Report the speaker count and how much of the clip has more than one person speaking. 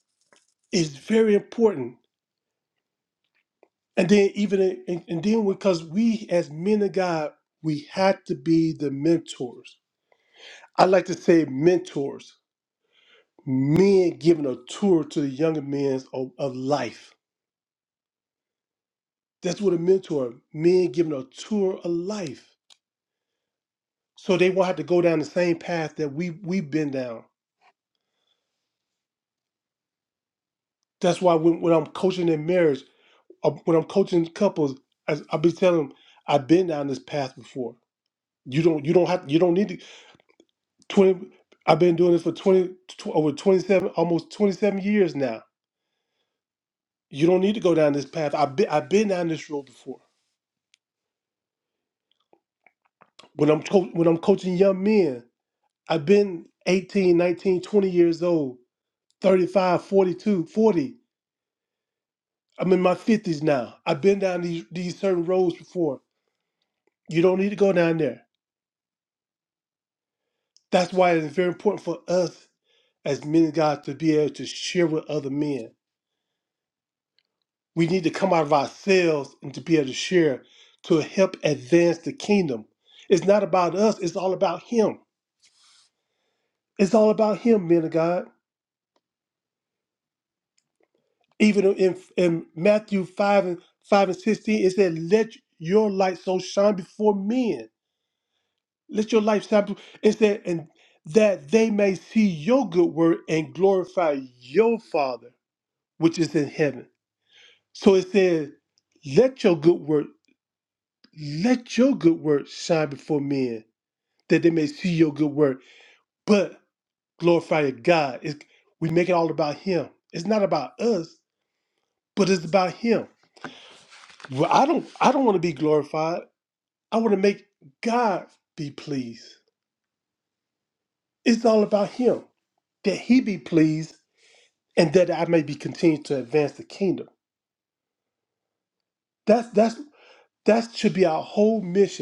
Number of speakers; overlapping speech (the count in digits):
1, no overlap